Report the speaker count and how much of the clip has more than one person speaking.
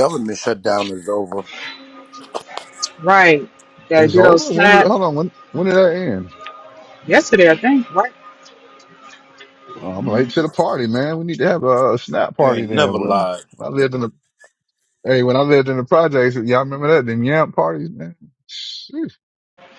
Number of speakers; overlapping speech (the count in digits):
3, about 9%